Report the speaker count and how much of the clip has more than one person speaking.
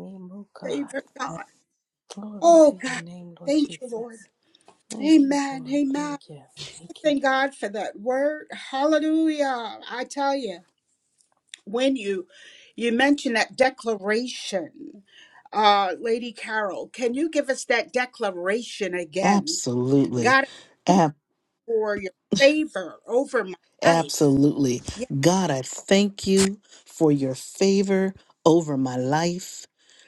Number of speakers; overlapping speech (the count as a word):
three, about 12%